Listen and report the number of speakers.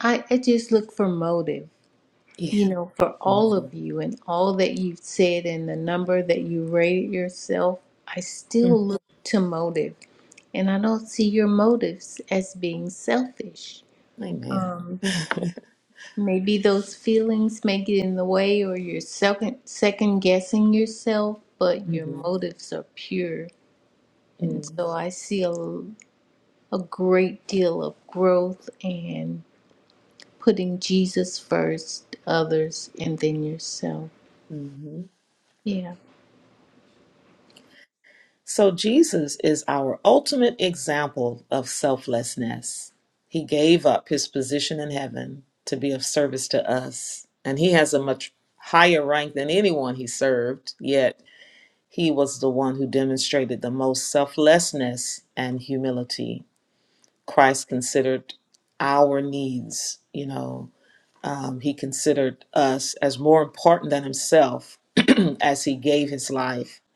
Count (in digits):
2